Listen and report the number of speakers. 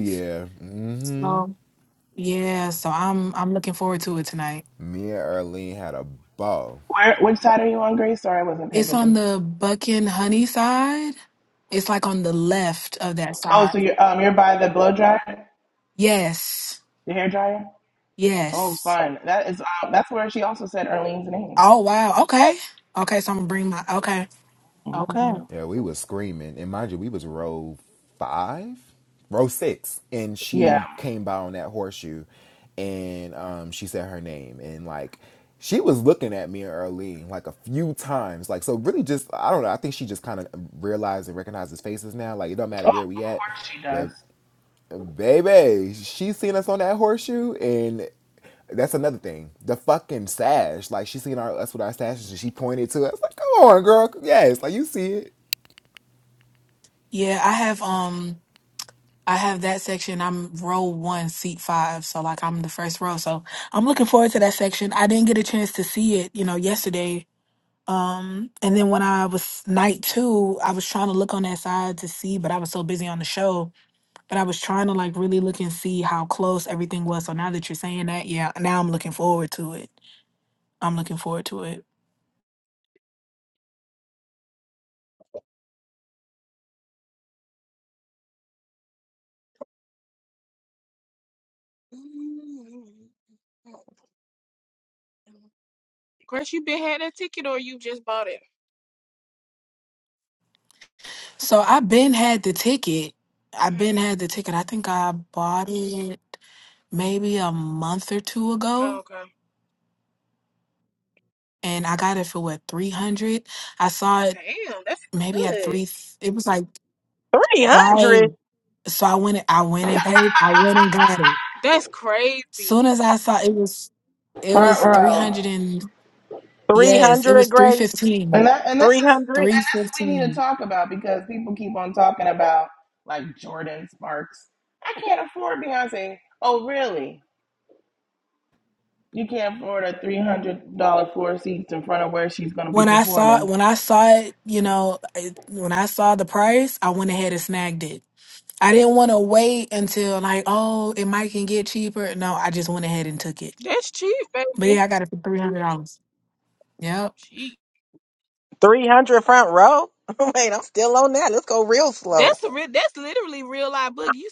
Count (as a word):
five